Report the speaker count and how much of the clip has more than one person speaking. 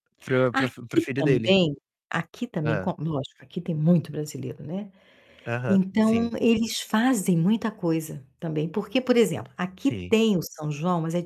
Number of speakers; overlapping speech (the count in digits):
2, about 19%